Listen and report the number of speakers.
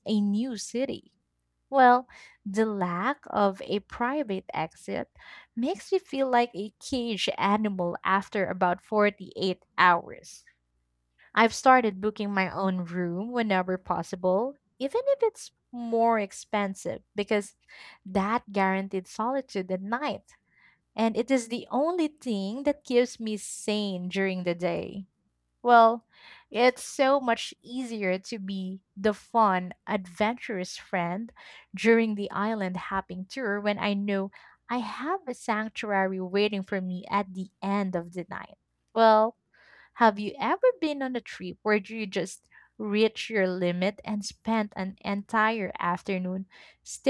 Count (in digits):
1